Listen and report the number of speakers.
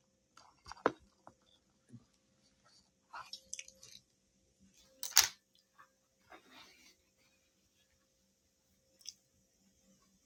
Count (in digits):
0